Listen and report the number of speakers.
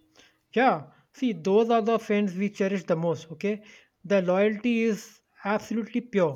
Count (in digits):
1